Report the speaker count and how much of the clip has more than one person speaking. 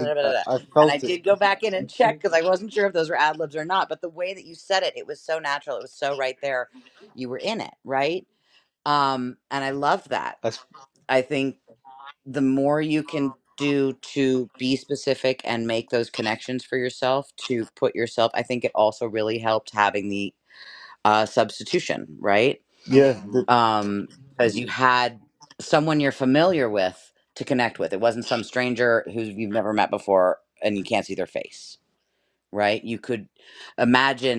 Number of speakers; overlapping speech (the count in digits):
2, about 2%